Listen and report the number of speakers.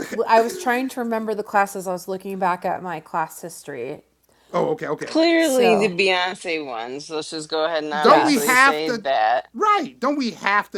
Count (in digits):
3